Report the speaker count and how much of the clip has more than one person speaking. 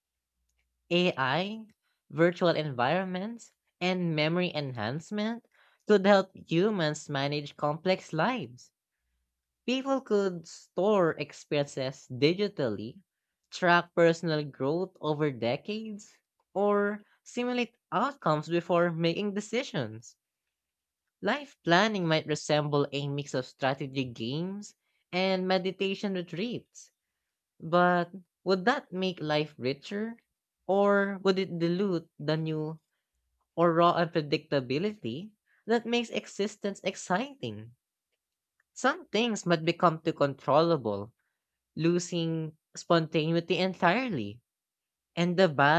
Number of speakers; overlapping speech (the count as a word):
one, no overlap